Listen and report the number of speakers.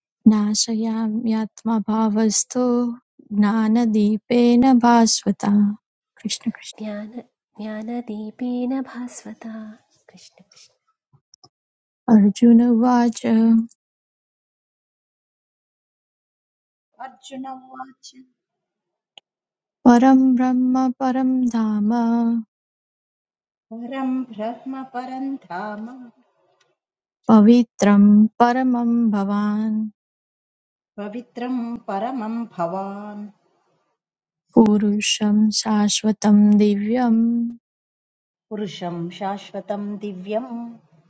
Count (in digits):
3